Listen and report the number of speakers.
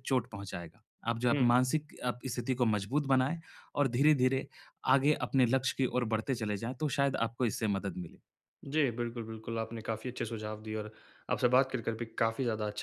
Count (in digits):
2